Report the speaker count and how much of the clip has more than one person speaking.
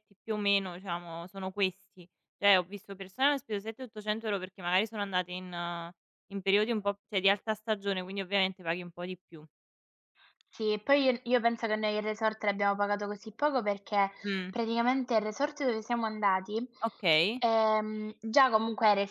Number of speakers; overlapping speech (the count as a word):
two, no overlap